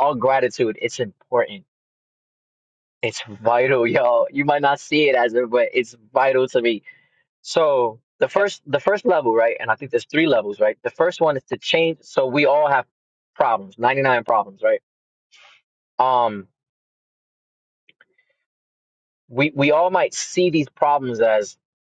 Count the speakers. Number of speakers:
one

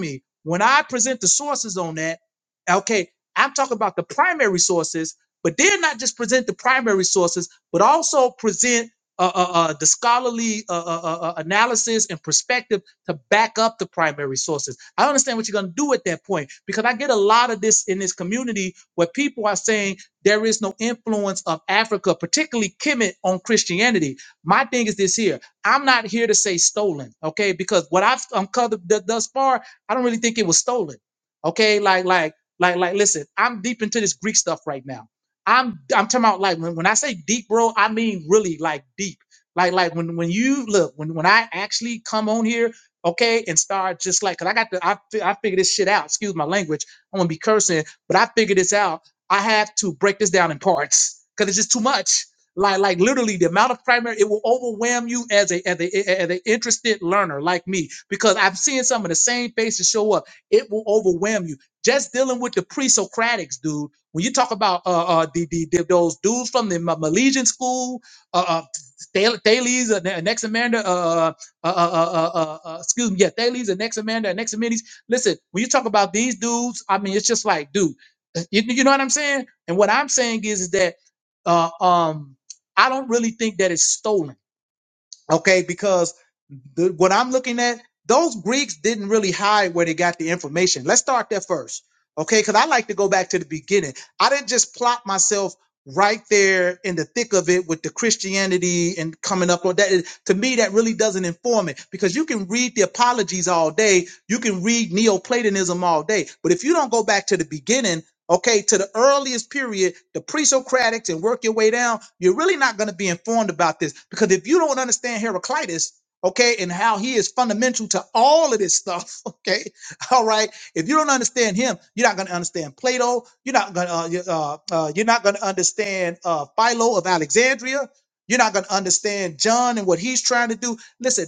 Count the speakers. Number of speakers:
one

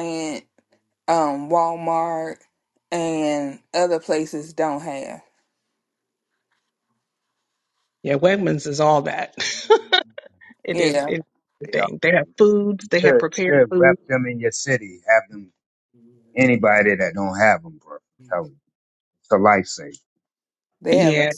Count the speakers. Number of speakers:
three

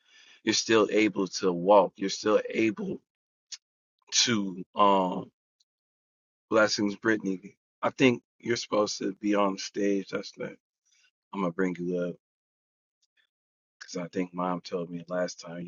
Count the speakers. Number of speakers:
one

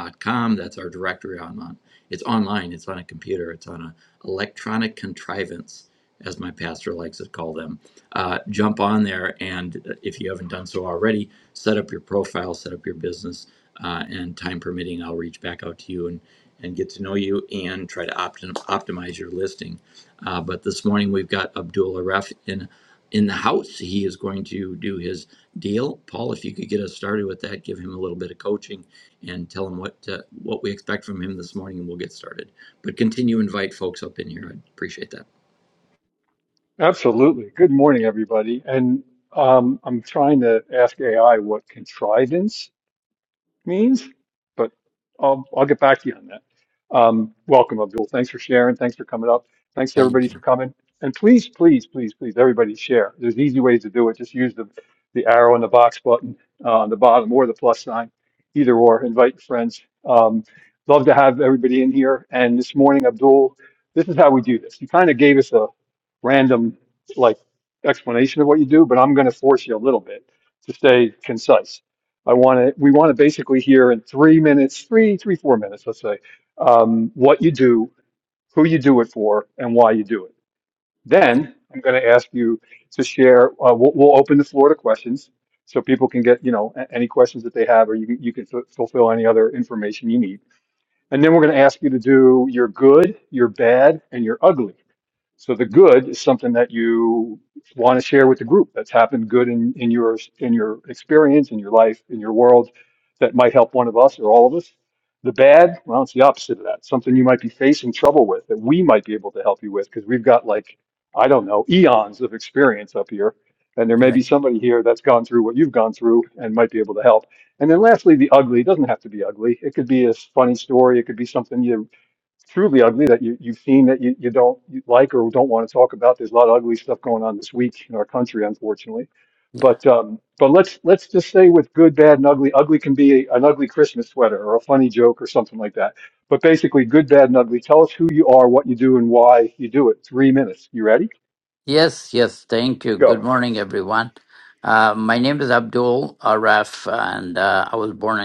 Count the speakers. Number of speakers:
three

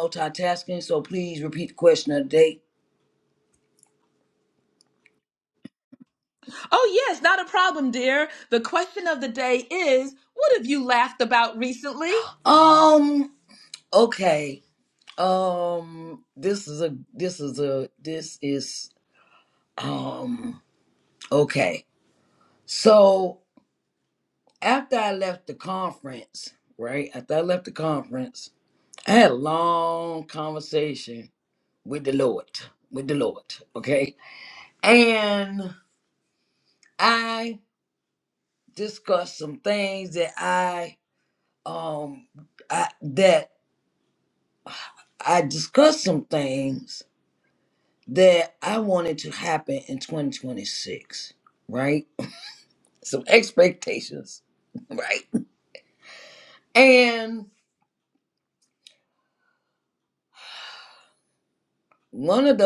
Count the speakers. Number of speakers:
two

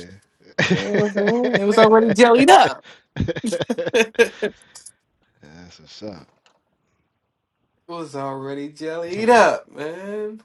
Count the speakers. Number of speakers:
two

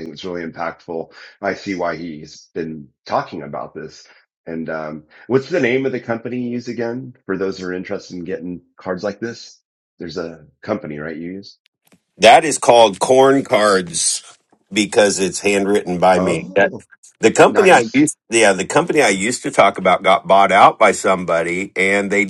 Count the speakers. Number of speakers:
two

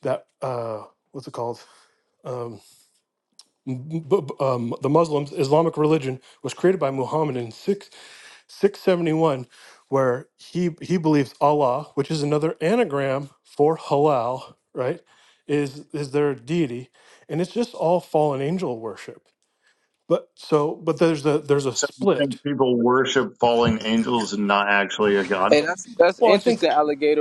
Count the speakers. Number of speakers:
three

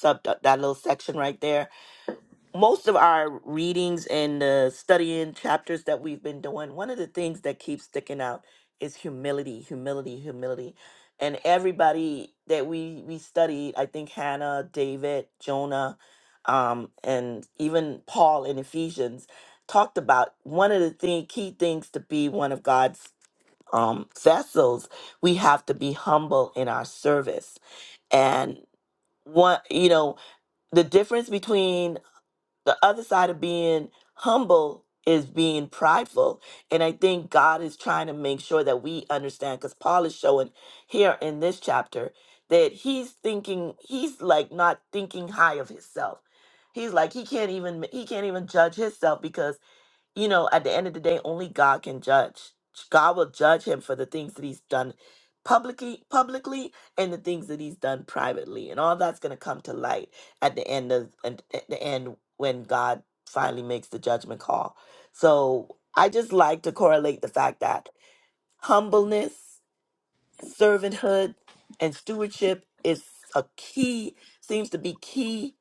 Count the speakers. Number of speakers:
one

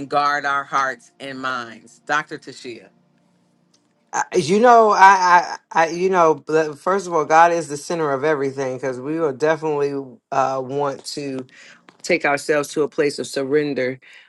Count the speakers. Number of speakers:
two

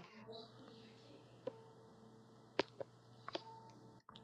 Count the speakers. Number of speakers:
zero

